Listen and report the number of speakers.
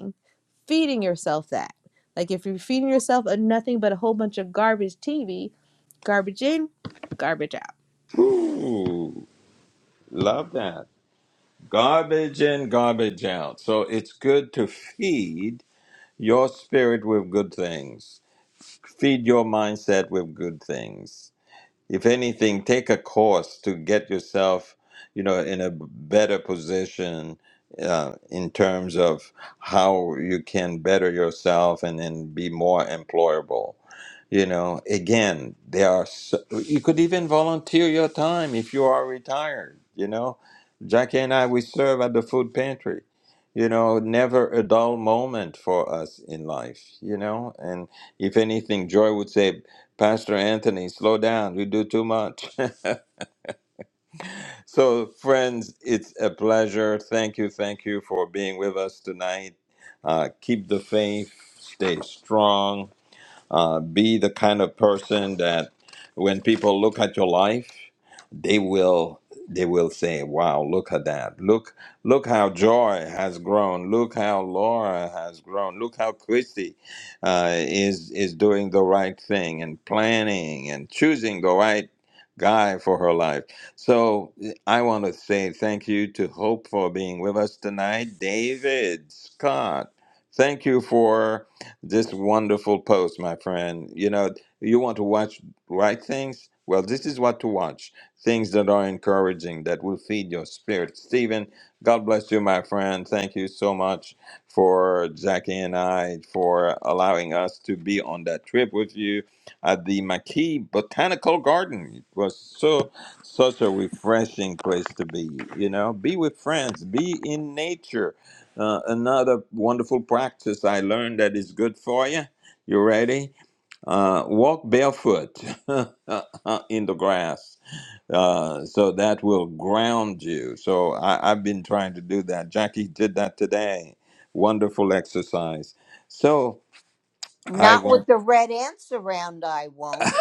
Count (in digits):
3